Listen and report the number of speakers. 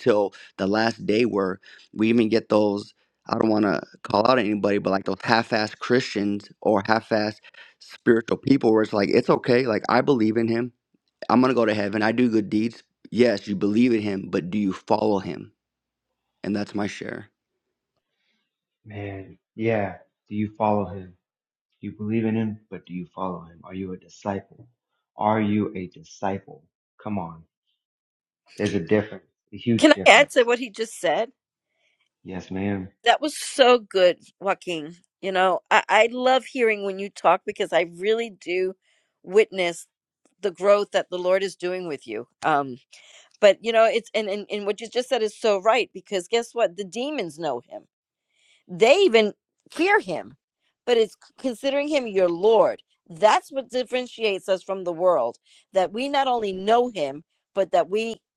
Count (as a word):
three